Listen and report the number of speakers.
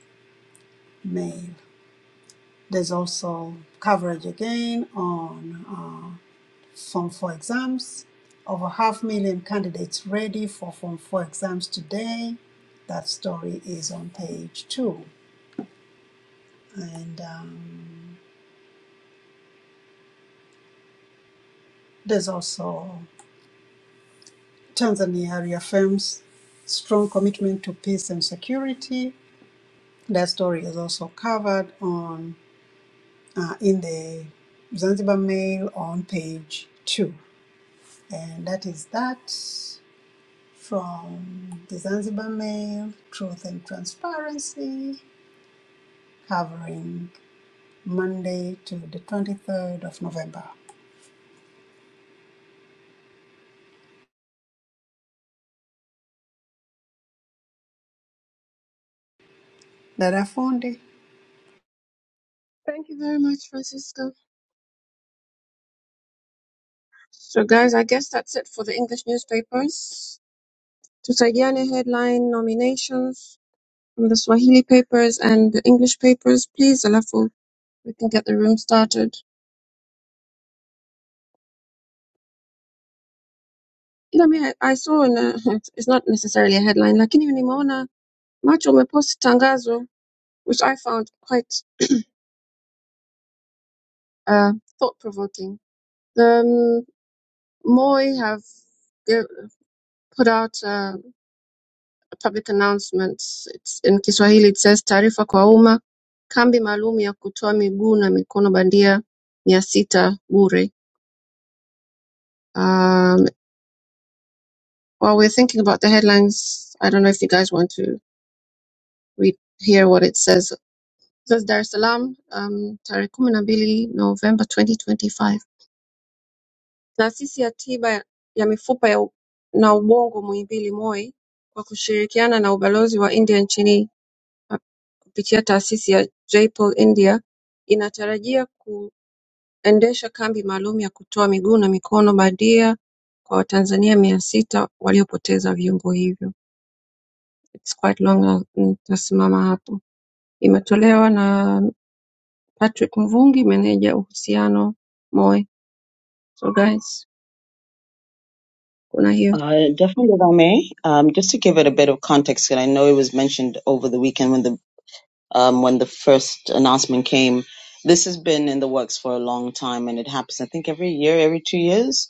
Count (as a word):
three